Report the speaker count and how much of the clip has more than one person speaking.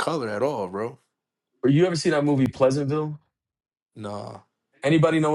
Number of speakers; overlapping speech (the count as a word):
two, no overlap